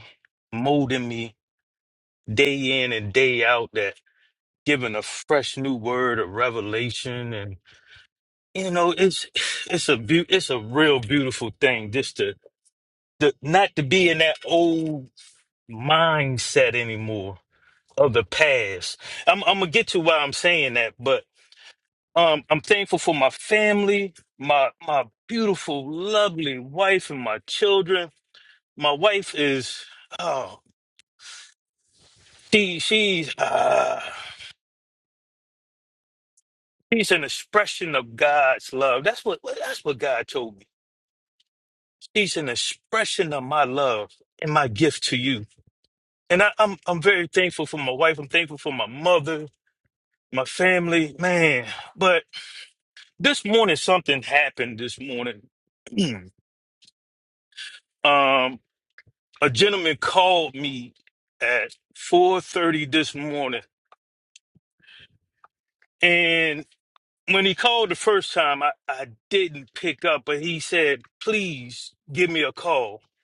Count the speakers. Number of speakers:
1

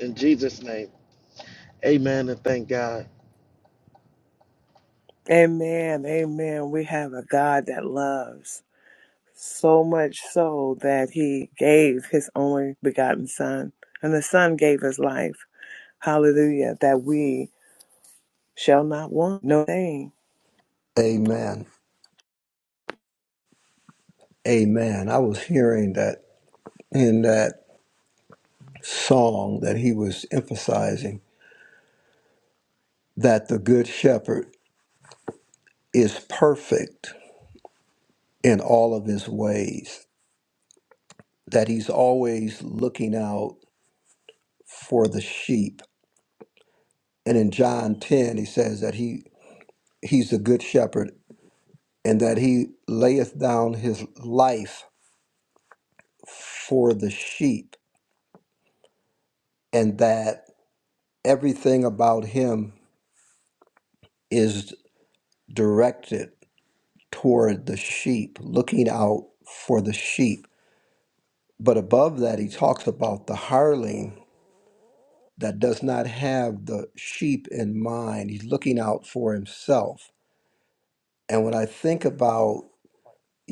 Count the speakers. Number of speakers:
3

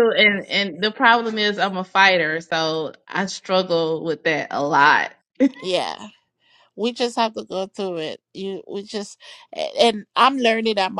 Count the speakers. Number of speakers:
2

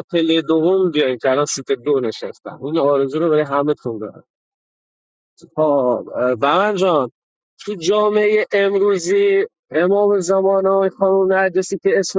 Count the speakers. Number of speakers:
1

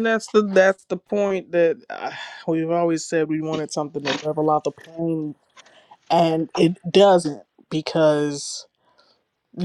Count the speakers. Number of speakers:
1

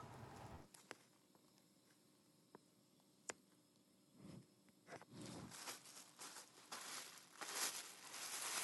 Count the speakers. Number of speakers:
0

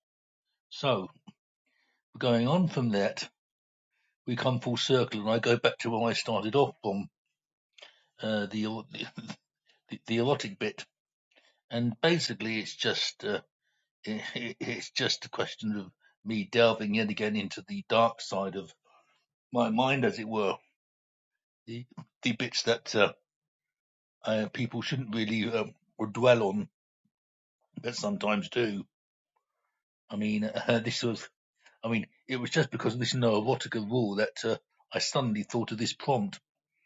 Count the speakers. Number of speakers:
1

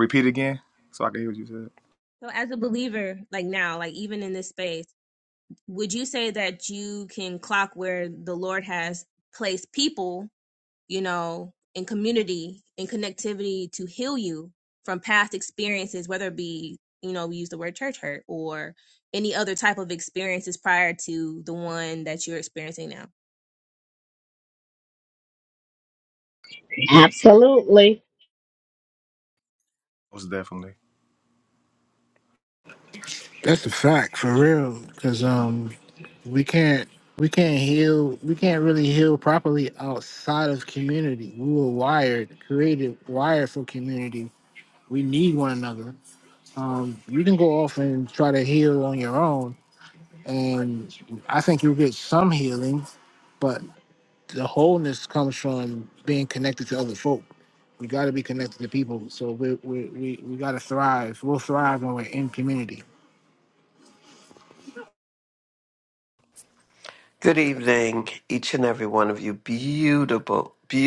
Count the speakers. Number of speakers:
5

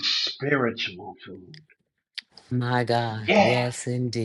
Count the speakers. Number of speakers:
2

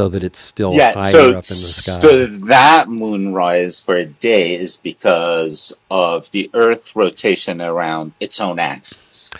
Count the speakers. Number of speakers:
2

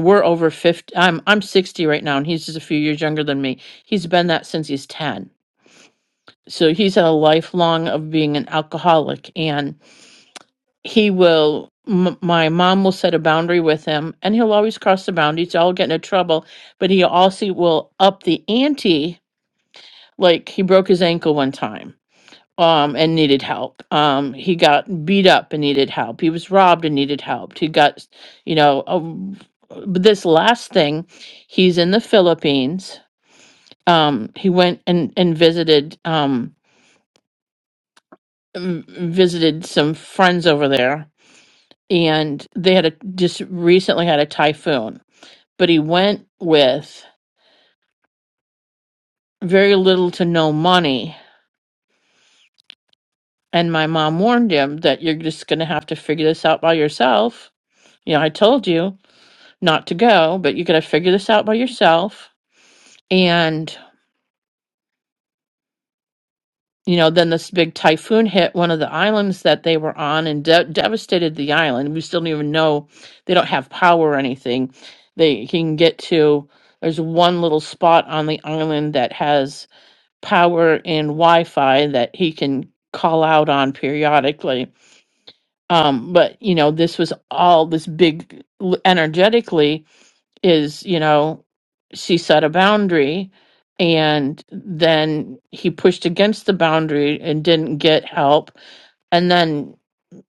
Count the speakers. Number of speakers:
1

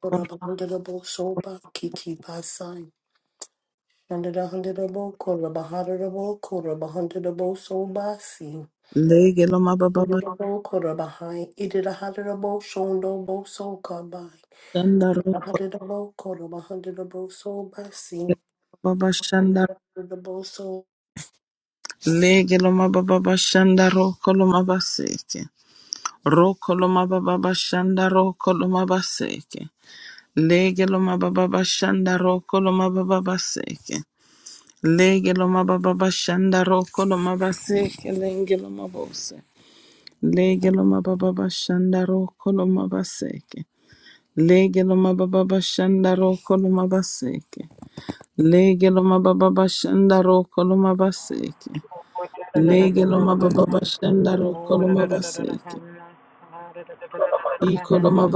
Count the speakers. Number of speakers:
3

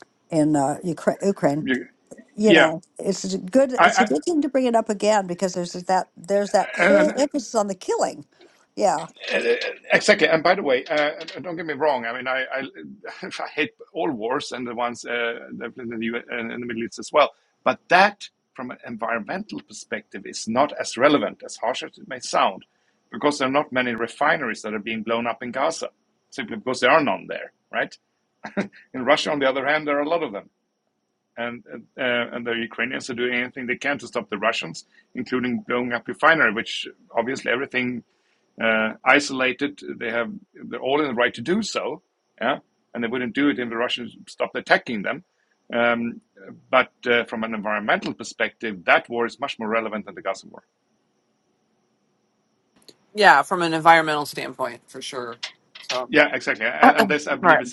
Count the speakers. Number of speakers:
3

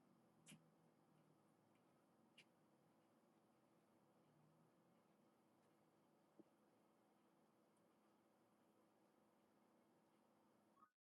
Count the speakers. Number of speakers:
0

